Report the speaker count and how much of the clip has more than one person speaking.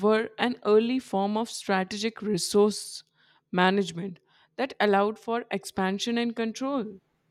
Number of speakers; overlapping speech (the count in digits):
1, no overlap